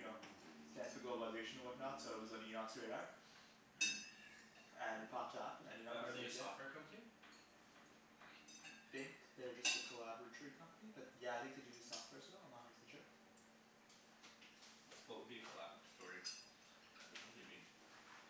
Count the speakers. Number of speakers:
2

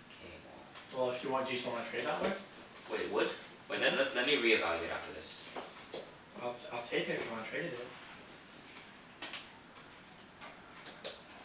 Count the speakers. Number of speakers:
2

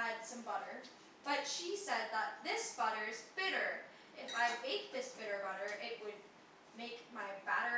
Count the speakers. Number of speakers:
1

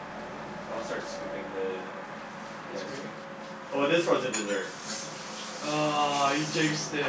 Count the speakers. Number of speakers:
2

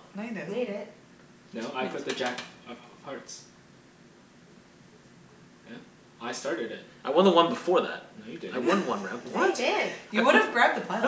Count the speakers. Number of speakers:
4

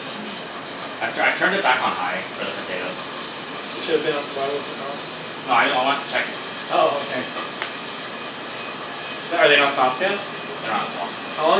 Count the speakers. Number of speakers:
2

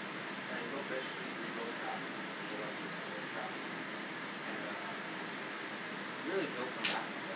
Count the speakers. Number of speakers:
1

